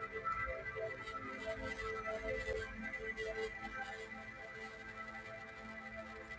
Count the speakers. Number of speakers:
0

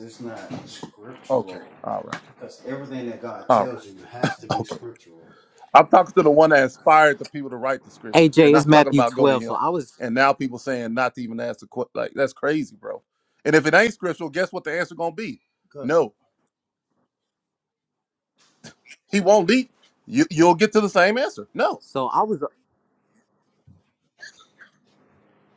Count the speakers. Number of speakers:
3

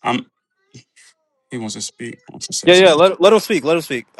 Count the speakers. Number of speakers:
2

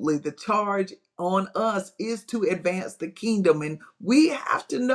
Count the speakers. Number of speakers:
1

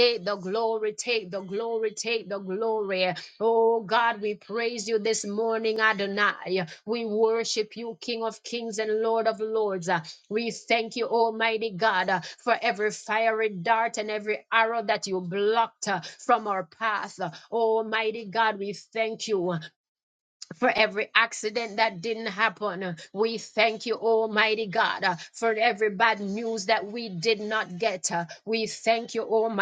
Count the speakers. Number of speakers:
1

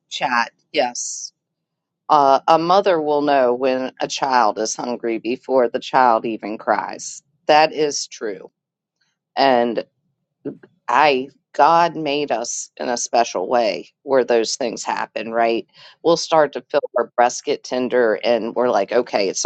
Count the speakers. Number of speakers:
1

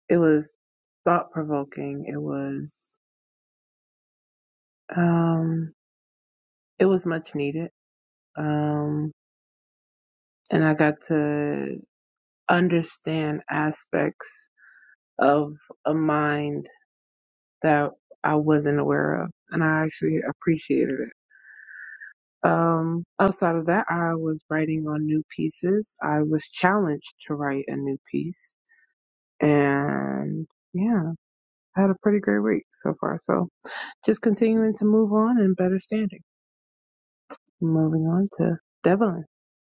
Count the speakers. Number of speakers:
1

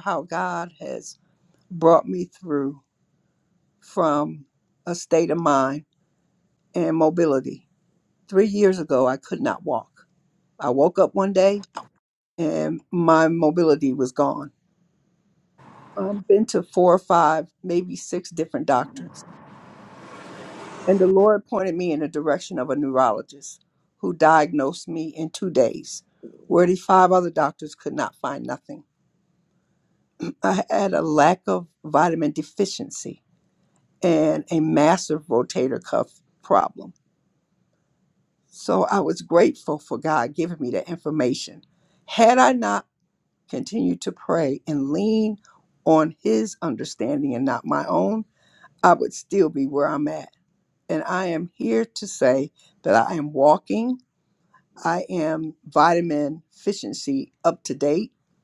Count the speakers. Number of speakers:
1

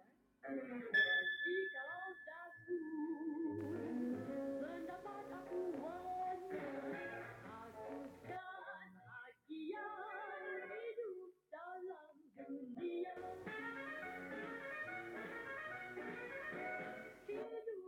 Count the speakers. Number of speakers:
0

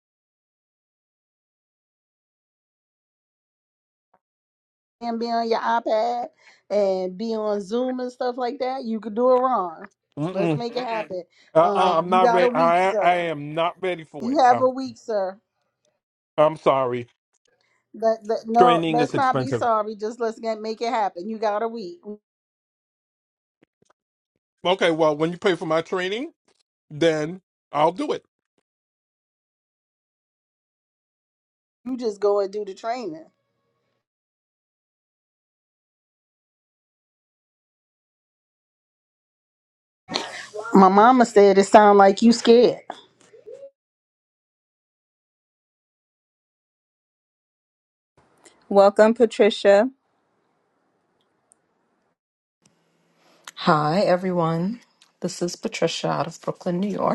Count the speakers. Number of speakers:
4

